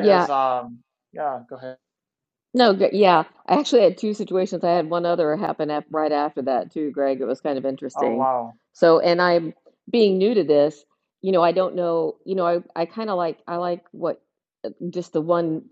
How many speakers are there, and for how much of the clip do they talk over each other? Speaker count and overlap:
2, about 4%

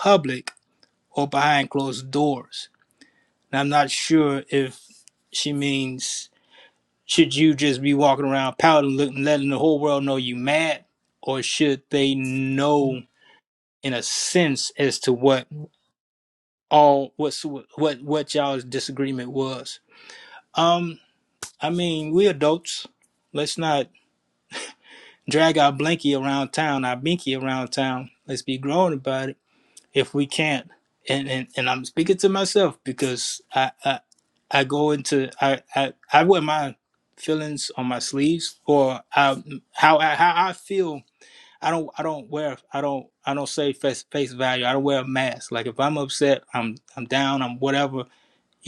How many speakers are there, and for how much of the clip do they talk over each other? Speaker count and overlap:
1, no overlap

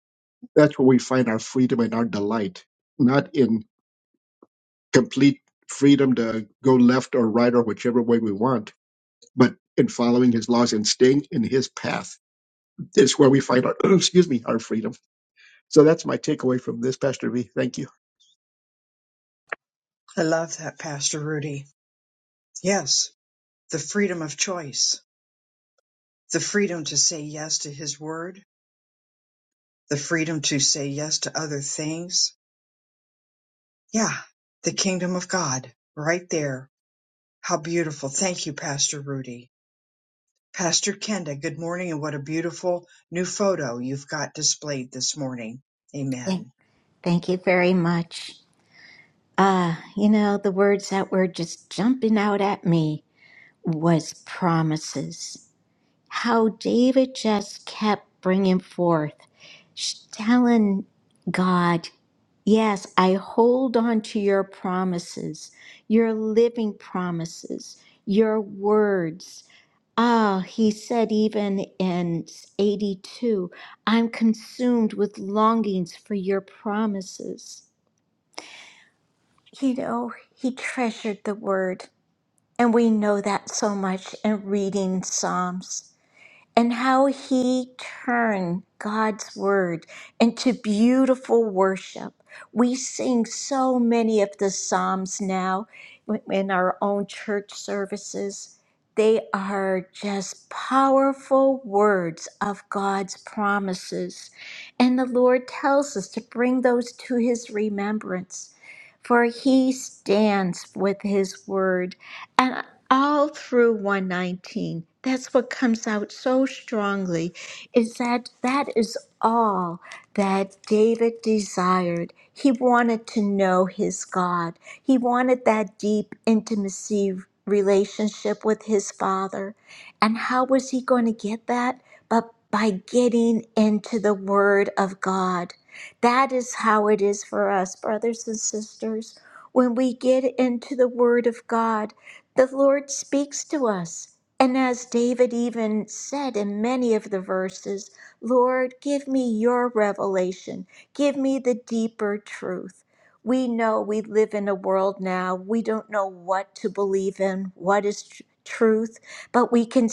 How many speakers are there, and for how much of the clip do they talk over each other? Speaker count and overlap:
3, under 1%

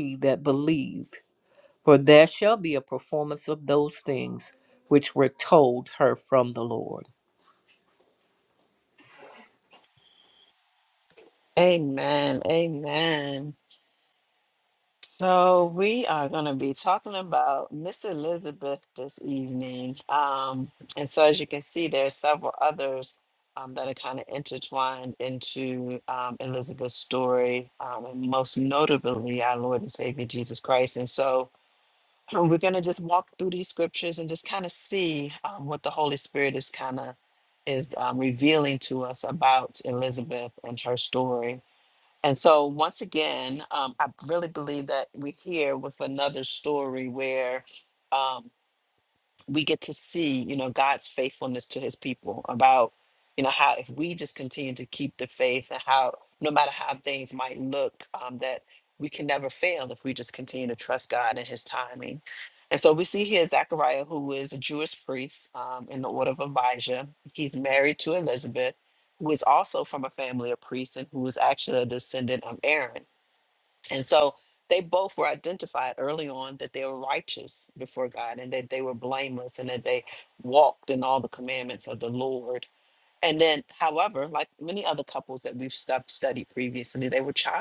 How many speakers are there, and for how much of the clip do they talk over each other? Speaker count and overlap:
2, no overlap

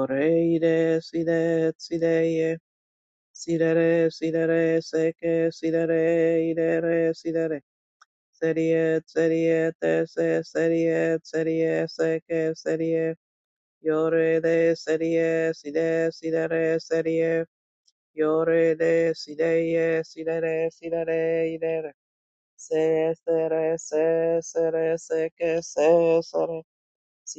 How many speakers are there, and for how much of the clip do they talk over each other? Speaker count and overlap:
1, no overlap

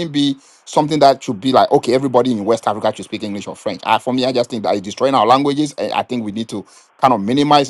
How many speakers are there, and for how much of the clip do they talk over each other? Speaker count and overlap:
1, no overlap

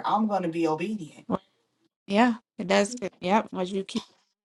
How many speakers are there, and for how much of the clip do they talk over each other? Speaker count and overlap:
2, no overlap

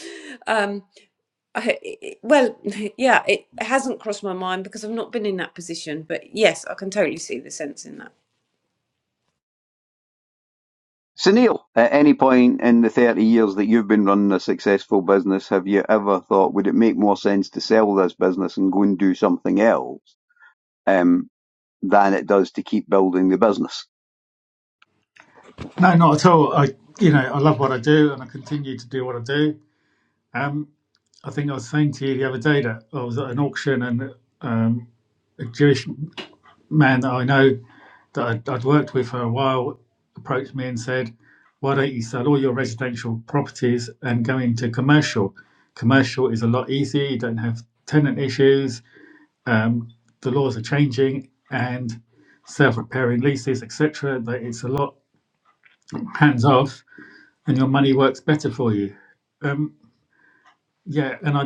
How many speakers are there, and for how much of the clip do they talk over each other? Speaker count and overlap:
3, no overlap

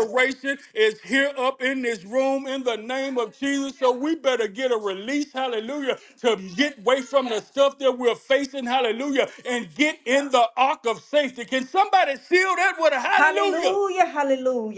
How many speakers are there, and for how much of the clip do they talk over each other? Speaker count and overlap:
2, about 4%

